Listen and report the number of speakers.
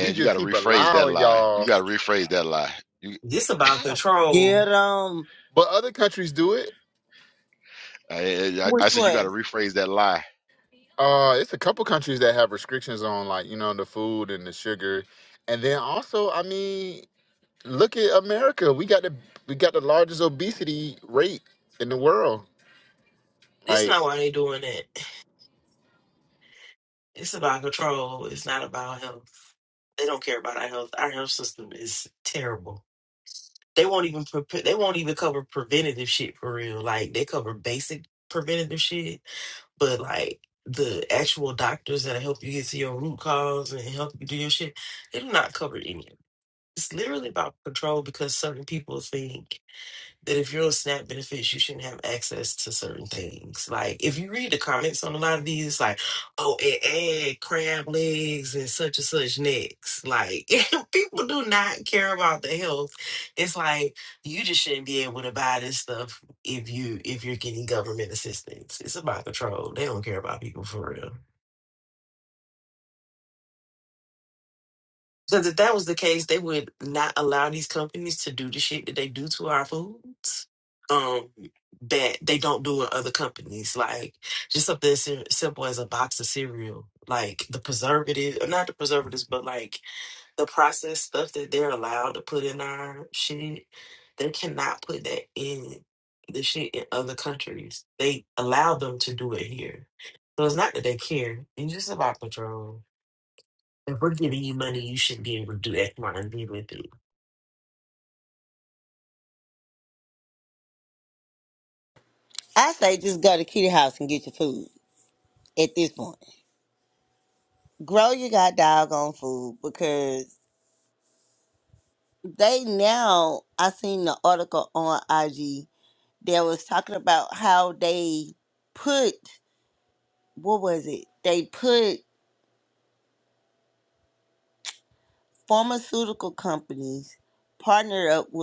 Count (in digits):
4